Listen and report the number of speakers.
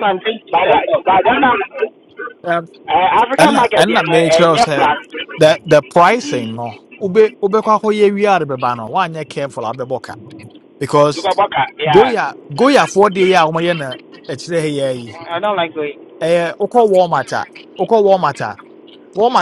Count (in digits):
3